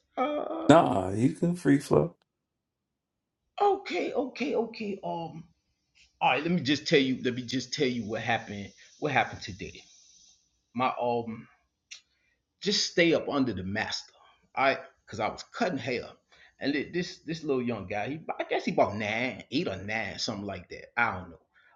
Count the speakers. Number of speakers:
2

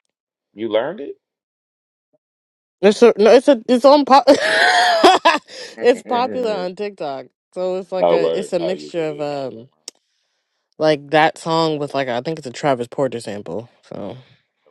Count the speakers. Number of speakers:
2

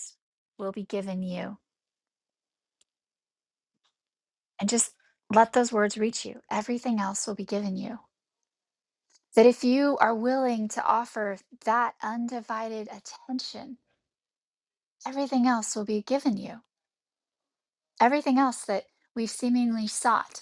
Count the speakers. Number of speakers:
1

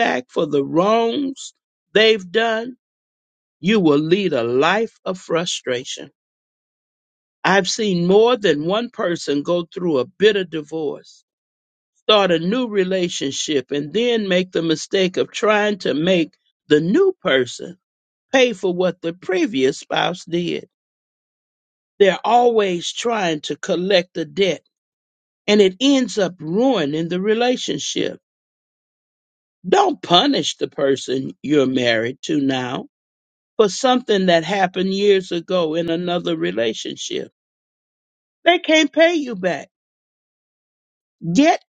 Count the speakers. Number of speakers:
1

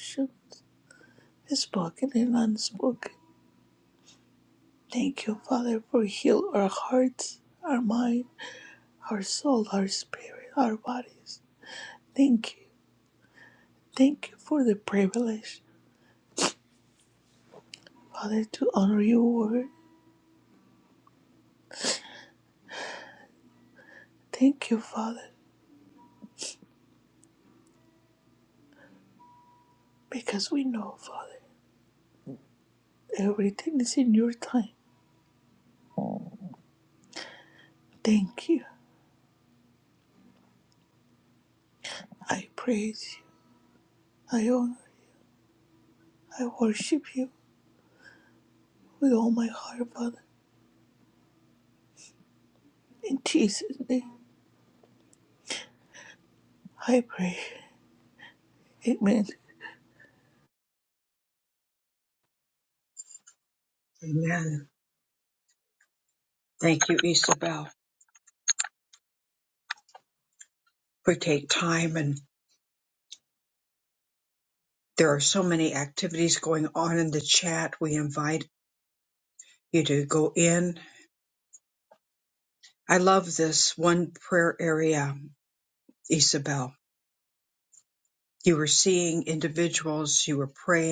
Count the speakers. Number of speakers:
2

